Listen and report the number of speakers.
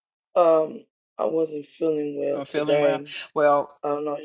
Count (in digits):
2